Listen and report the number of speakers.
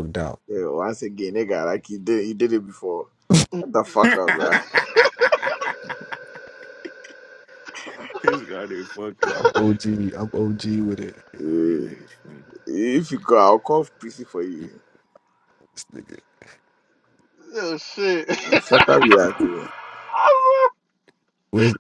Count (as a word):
four